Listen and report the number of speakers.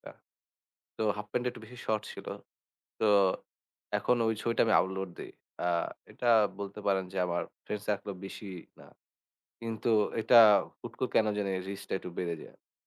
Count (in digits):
1